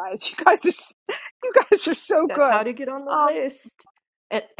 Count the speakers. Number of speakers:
2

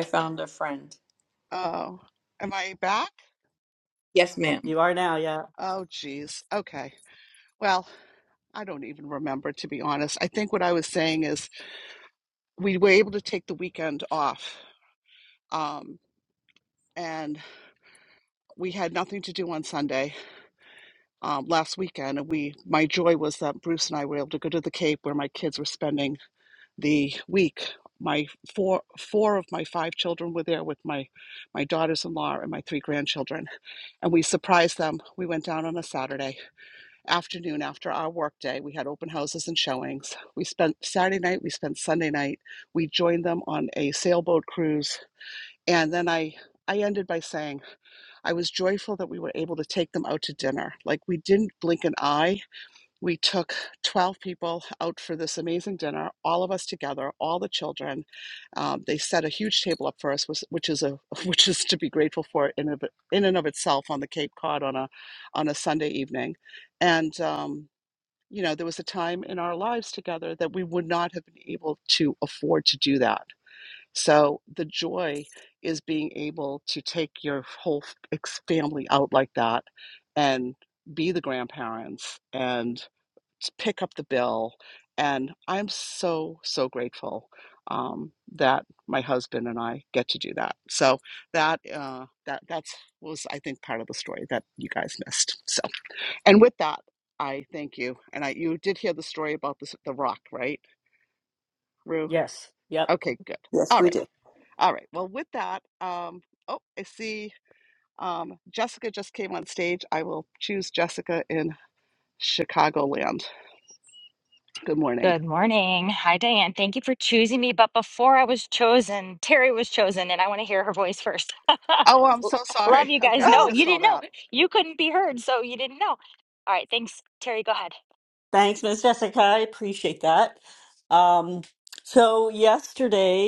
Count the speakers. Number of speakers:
4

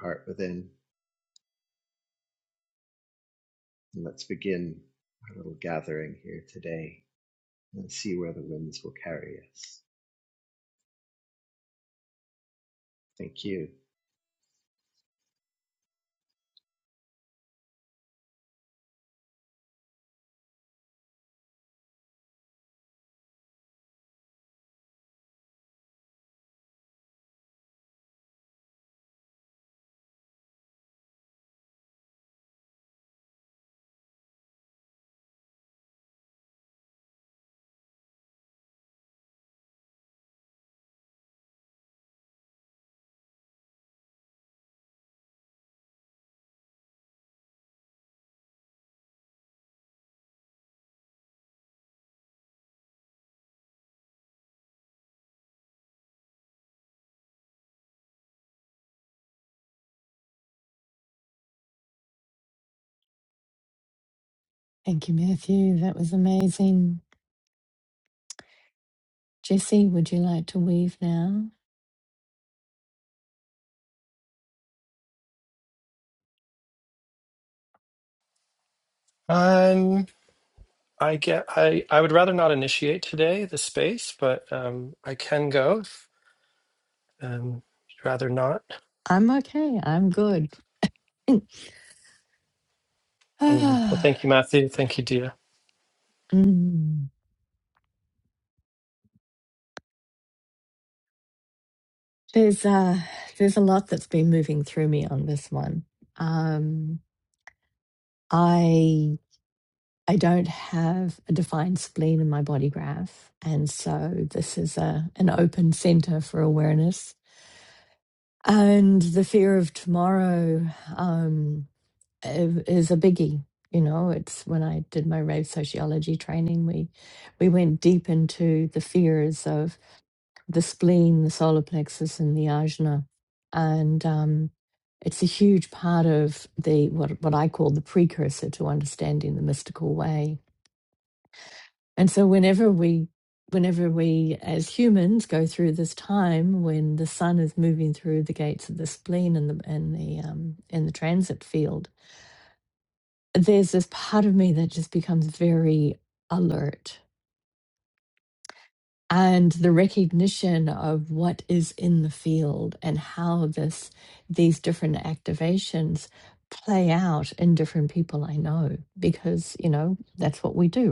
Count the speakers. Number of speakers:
3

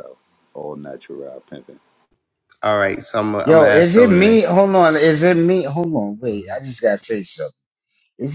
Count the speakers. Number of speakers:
3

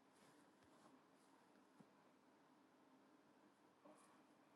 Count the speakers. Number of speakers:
0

